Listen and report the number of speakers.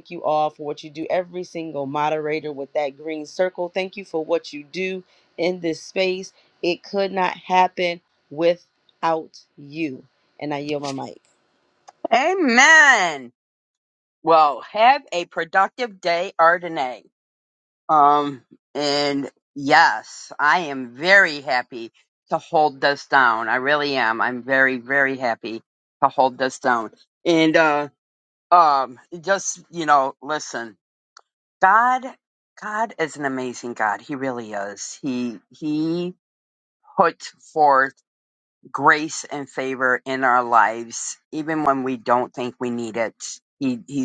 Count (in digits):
2